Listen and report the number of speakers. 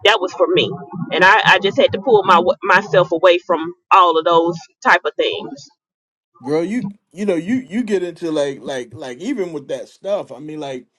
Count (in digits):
2